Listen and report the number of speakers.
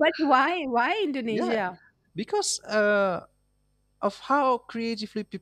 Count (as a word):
two